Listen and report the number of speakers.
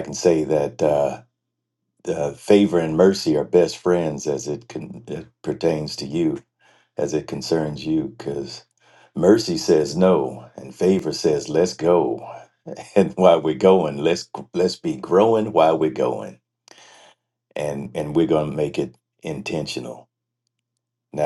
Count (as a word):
one